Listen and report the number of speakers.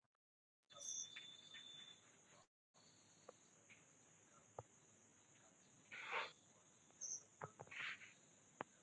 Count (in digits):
0